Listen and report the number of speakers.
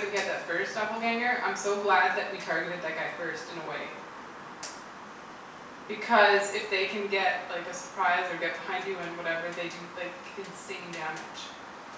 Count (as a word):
one